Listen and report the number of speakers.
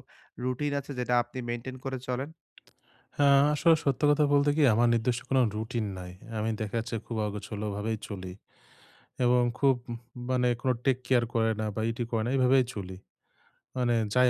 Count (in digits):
2